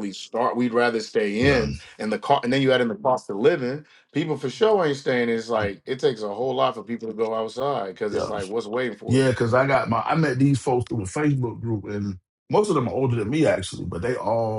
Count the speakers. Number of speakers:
2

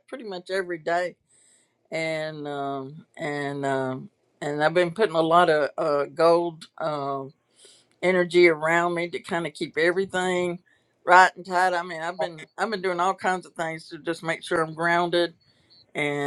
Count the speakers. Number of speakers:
1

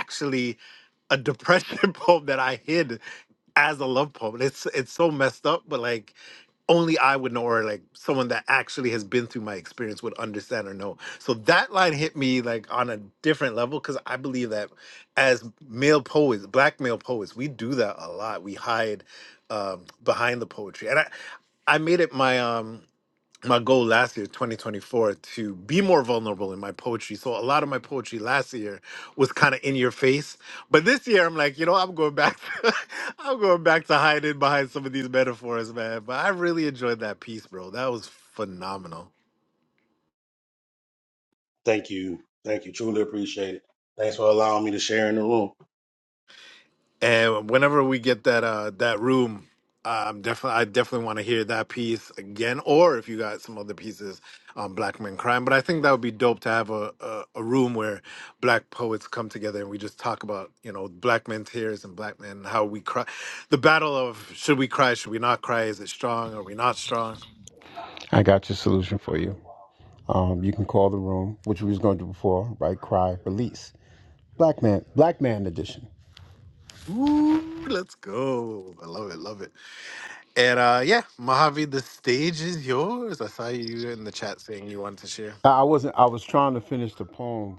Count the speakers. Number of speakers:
3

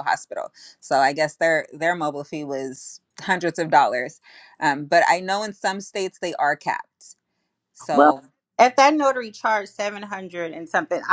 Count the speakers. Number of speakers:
2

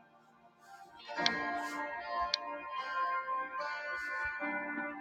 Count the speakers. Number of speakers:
0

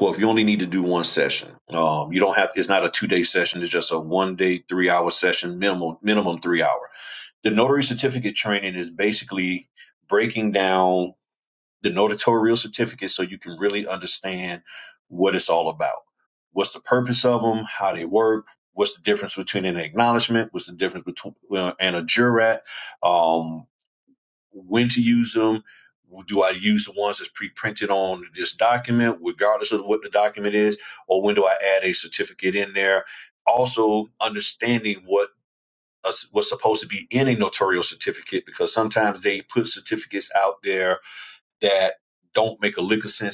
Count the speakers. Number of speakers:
1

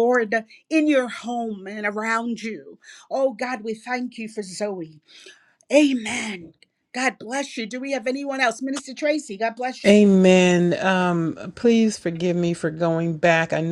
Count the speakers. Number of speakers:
2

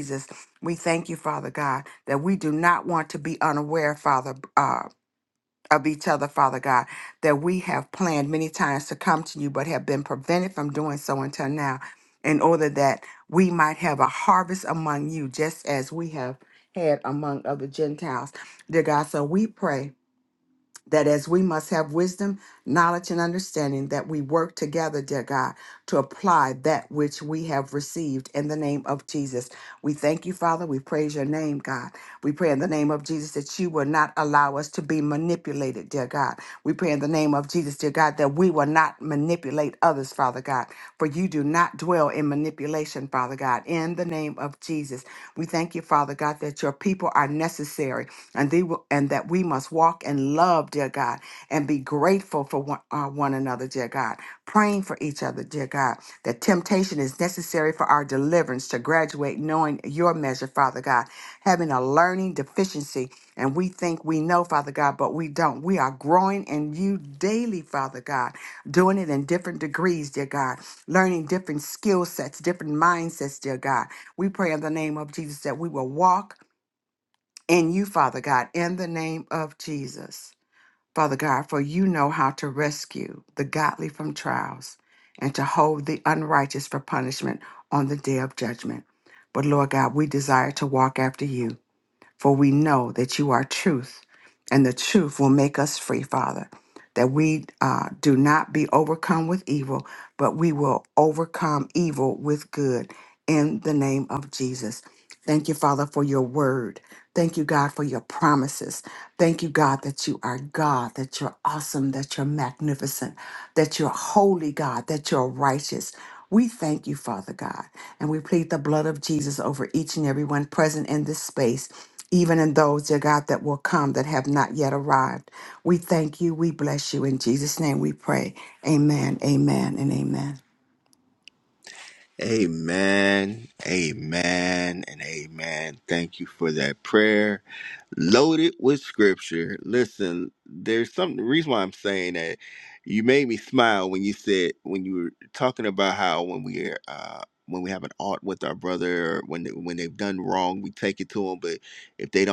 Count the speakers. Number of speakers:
2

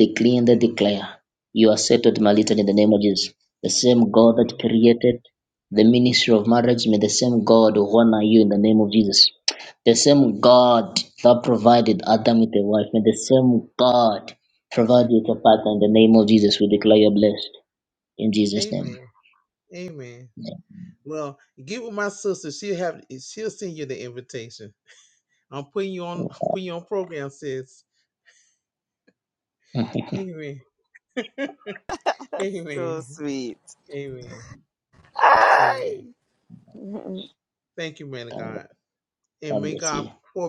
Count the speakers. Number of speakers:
3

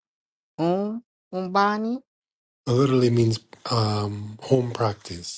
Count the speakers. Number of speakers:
2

